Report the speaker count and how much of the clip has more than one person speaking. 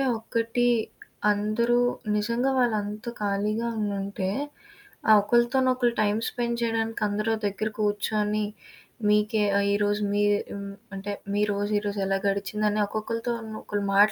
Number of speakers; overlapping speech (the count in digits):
1, no overlap